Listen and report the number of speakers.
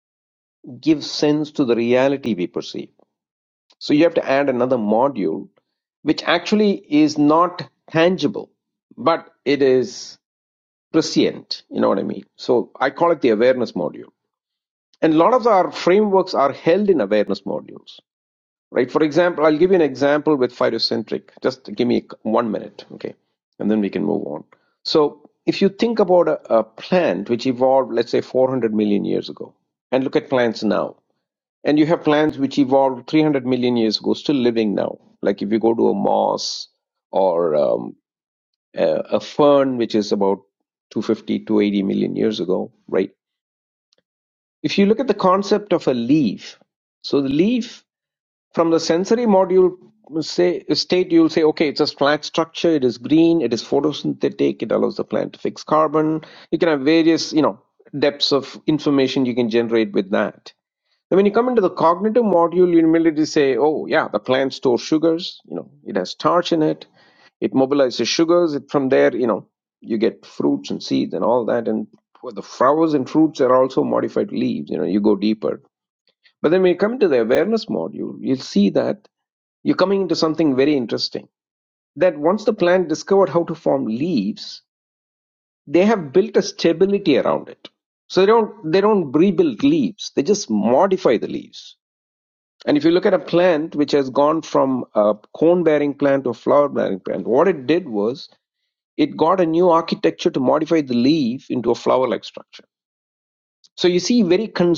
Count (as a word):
one